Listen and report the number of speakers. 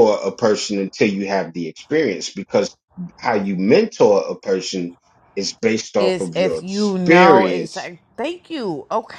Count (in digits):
2